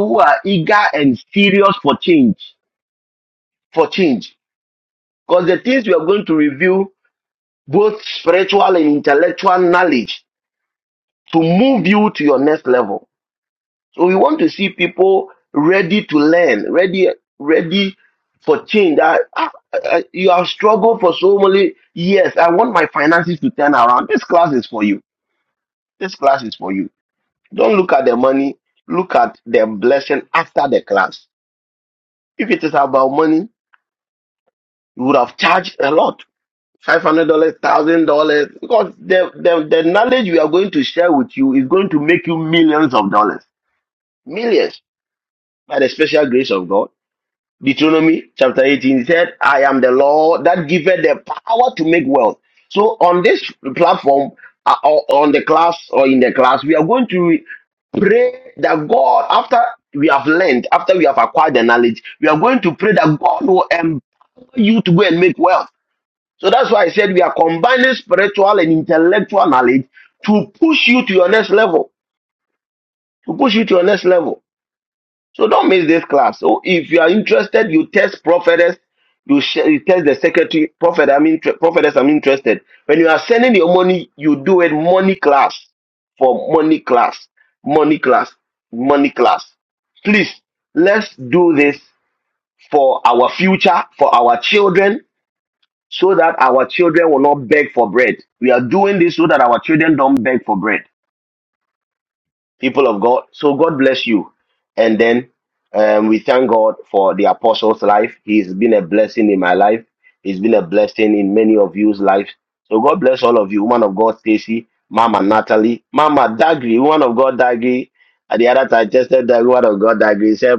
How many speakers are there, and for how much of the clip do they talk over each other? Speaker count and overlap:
one, no overlap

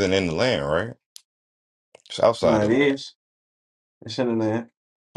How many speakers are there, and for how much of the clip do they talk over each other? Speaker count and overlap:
two, about 11%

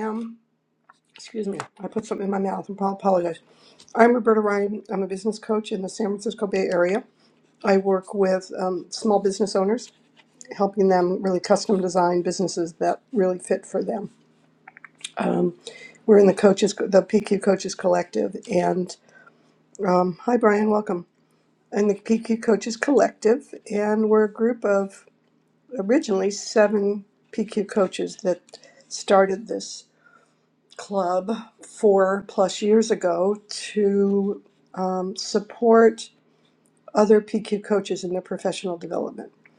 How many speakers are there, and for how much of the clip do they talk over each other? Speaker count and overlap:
one, no overlap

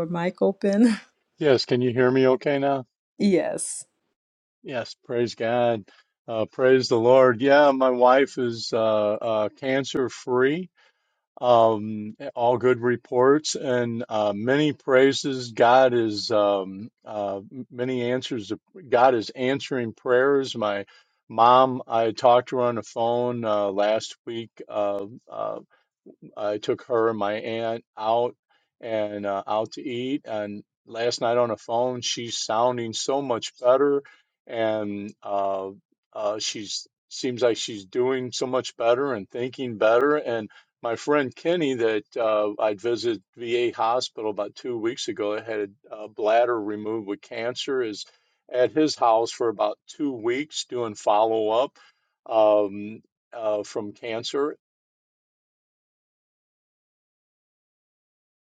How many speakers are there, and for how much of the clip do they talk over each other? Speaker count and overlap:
two, no overlap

